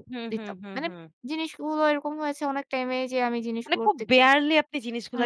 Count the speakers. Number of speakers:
2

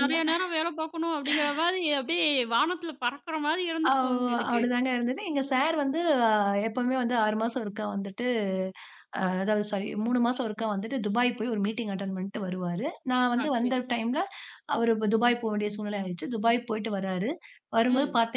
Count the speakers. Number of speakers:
2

